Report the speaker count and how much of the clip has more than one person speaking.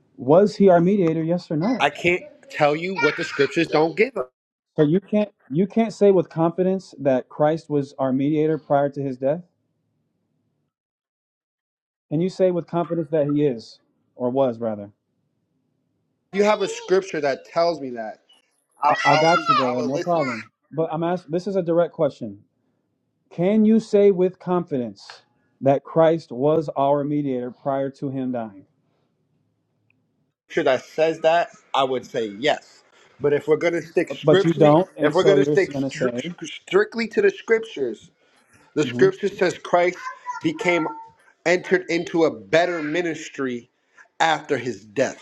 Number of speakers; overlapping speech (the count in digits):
2, about 9%